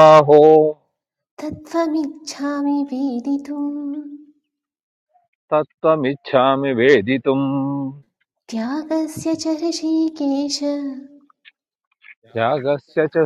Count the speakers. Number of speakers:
two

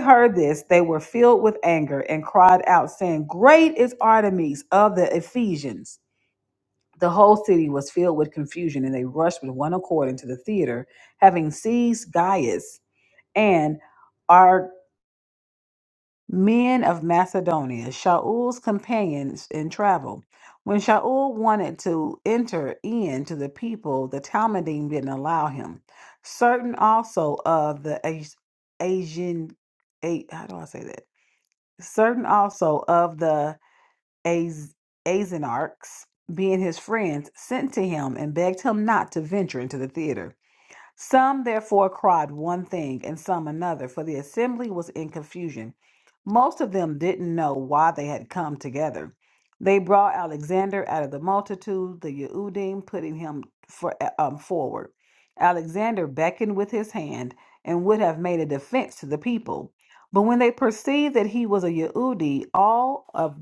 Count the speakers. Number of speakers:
one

